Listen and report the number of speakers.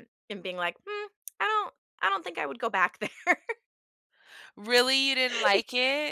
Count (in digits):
2